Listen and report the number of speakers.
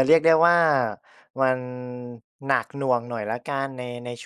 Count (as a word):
one